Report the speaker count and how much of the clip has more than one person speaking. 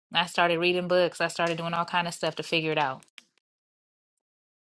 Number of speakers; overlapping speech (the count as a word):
one, no overlap